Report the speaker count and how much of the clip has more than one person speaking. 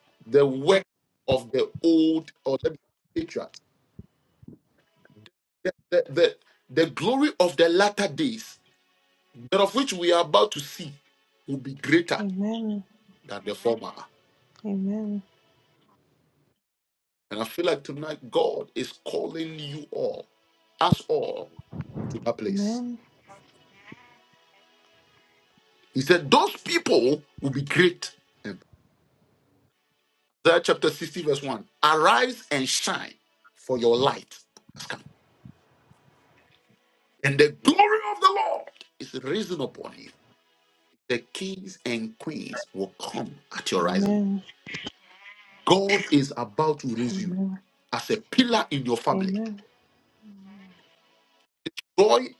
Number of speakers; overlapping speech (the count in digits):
2, about 2%